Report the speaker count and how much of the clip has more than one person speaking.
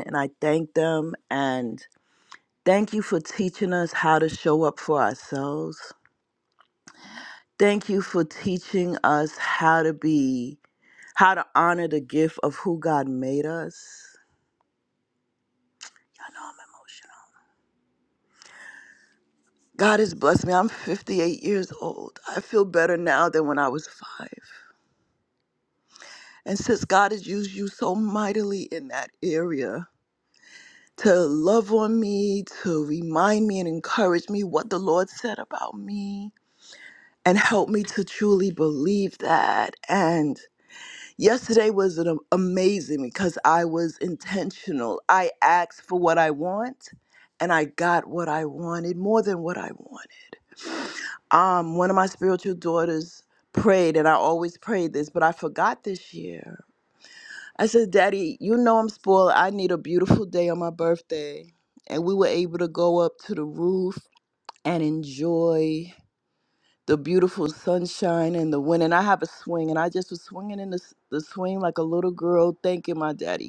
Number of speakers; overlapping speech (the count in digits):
1, no overlap